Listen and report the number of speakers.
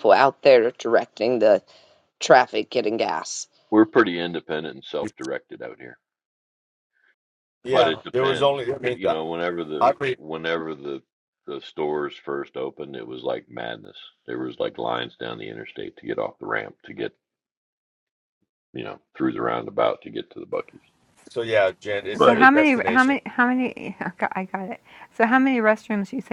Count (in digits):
4